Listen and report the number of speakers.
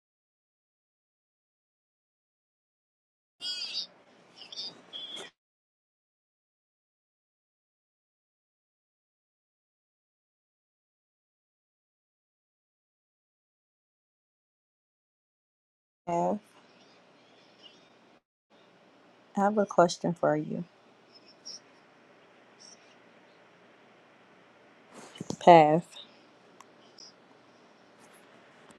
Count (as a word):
one